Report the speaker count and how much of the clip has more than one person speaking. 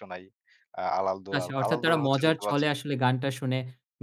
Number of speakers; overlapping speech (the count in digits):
2, about 23%